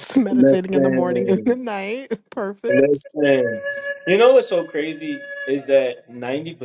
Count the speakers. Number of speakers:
two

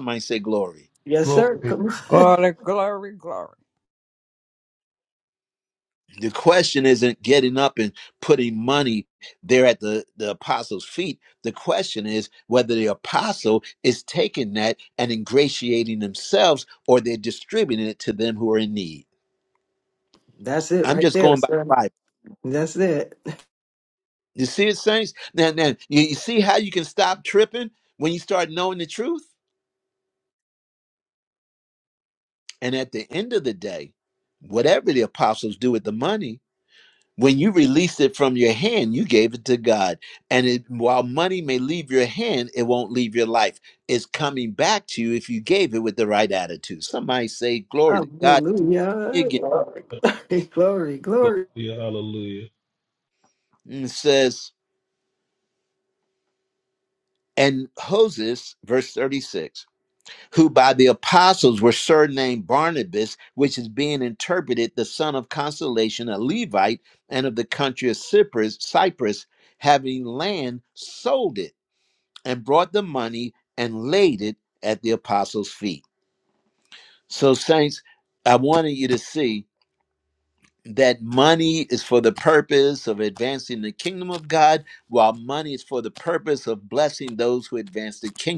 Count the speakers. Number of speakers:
four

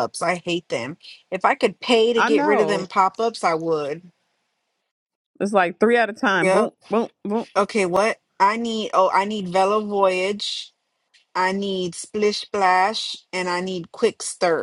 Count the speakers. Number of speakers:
two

